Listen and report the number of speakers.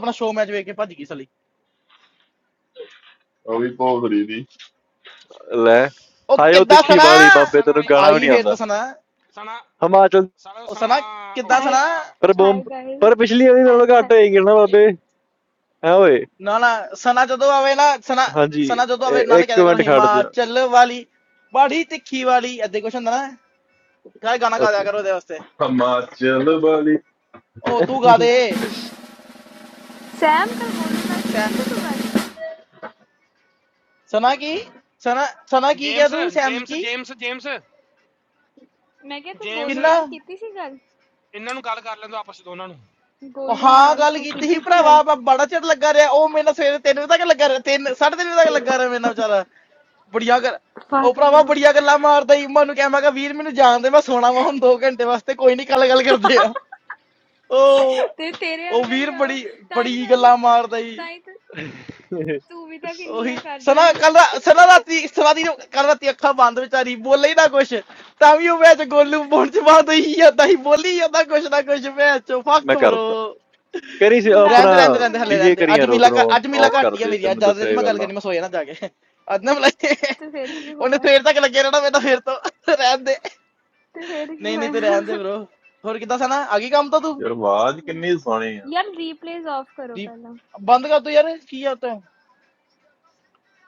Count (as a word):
five